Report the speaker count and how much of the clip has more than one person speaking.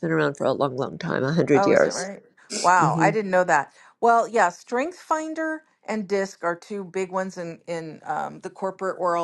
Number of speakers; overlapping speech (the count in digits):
2, about 10%